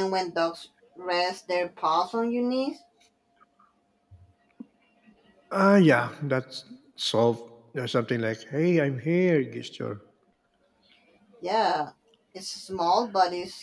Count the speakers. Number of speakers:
two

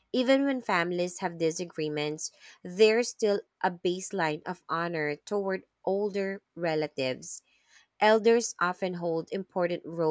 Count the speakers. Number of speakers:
one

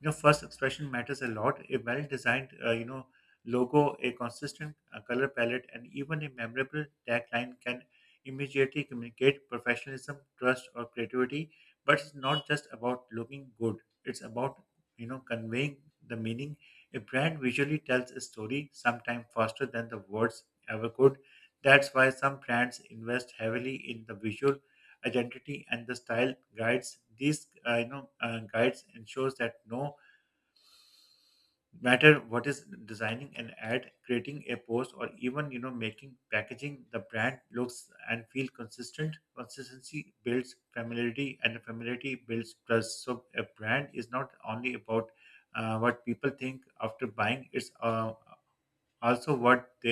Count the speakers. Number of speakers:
one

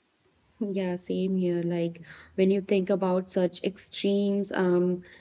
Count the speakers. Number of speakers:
one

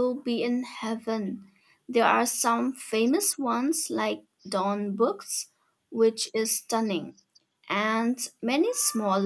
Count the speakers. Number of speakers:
one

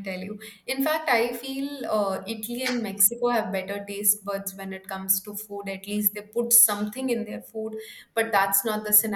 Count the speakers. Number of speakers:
one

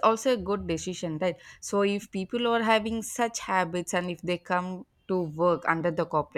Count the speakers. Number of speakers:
one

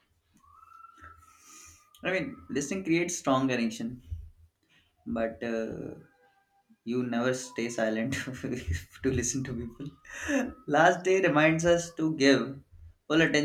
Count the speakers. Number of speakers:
one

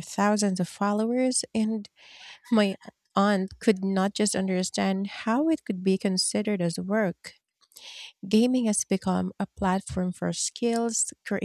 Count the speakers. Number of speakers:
one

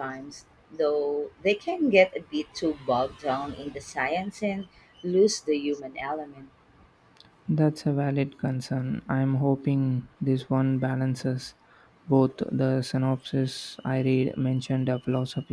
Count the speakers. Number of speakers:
two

